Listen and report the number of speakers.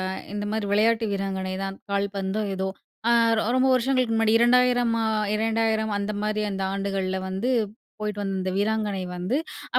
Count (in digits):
1